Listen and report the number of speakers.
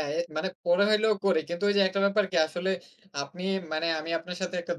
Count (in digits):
1